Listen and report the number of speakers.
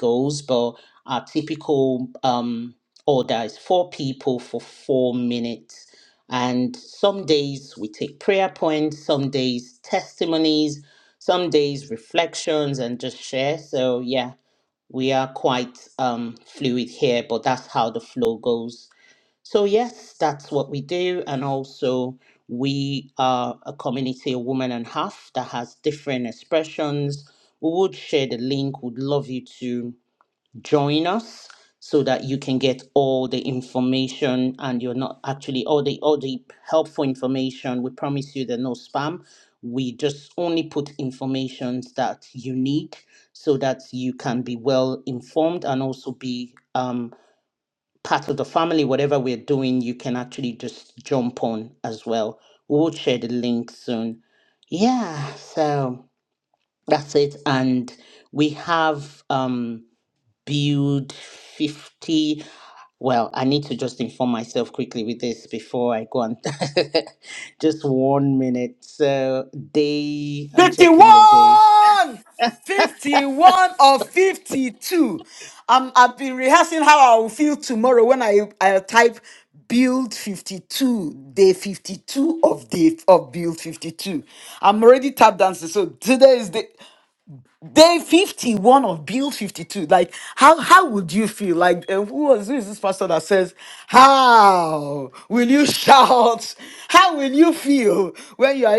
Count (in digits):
2